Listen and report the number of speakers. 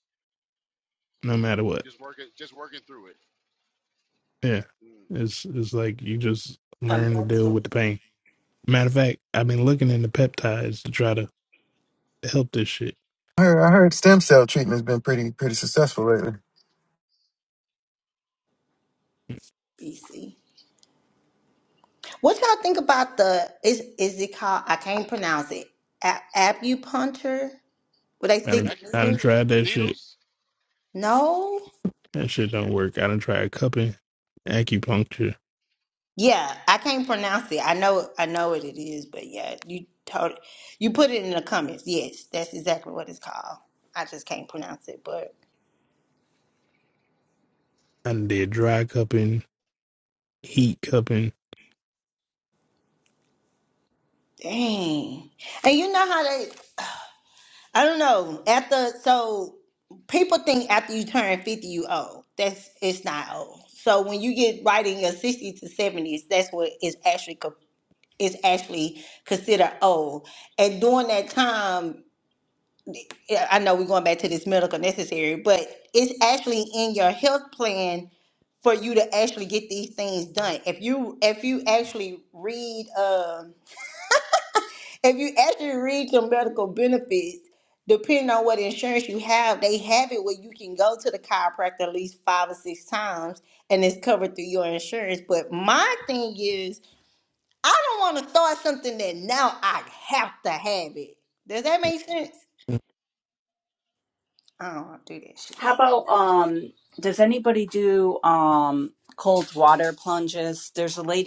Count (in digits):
5